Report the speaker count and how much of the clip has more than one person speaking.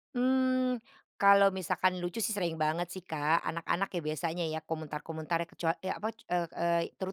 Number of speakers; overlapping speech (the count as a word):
one, no overlap